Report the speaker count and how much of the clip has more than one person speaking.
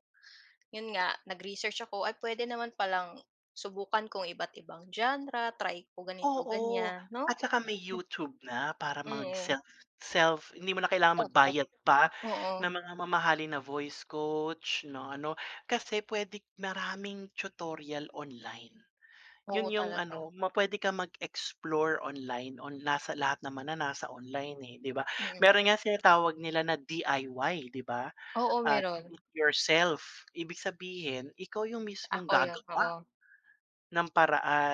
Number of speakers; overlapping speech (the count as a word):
two, about 10%